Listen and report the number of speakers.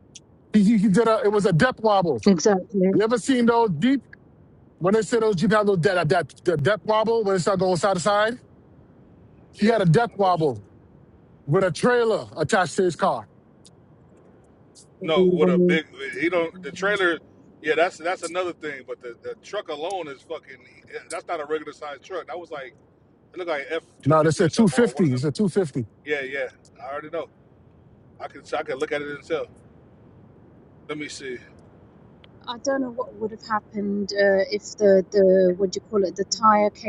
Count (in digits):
3